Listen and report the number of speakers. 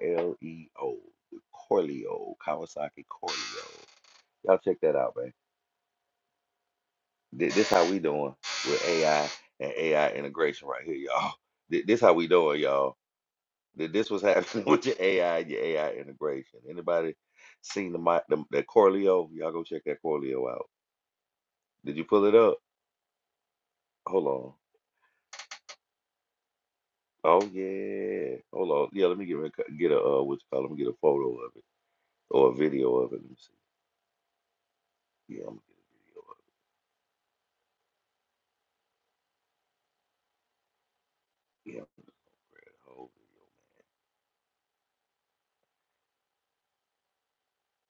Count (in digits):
1